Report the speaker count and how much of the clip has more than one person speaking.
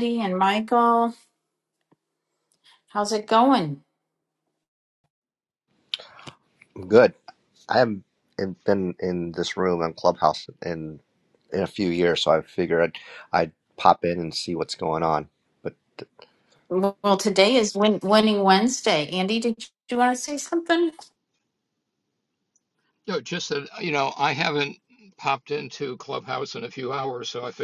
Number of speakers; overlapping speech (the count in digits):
3, no overlap